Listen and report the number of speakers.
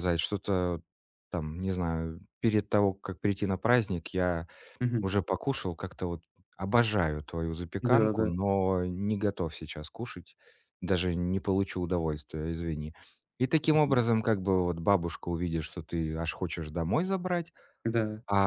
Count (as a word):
two